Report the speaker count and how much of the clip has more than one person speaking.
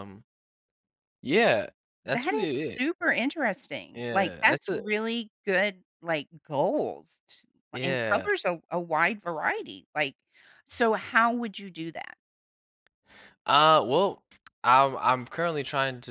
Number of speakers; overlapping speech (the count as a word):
two, about 13%